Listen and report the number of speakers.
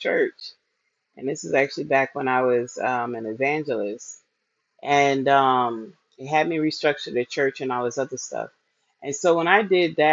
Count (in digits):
1